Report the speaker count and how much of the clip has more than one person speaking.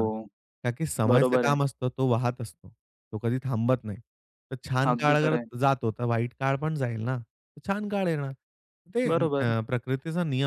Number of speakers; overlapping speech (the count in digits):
2, about 17%